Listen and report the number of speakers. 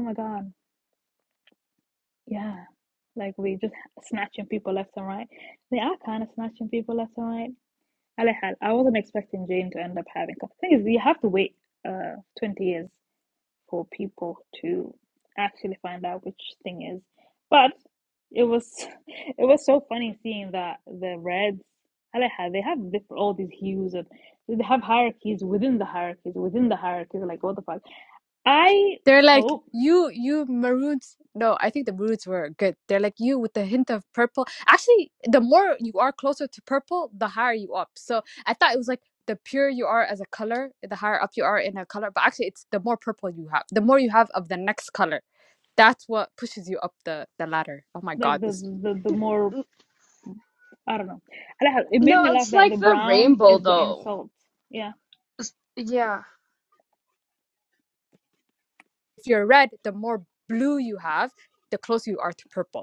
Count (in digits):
3